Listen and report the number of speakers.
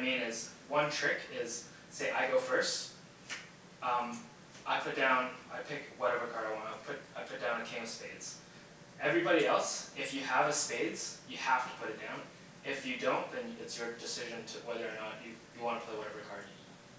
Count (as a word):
one